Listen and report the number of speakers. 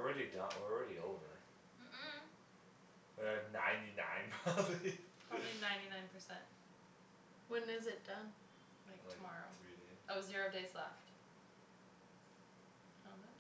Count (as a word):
three